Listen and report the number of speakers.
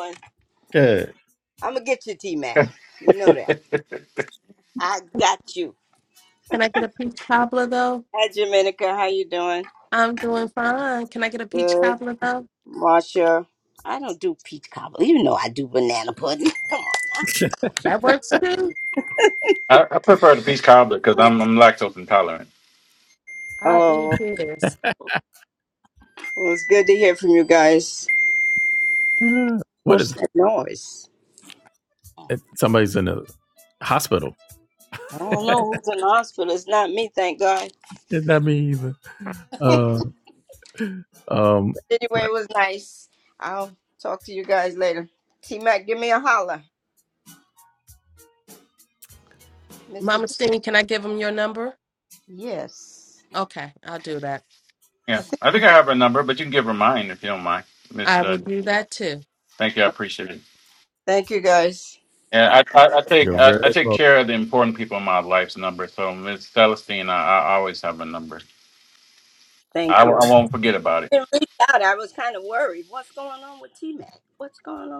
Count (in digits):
4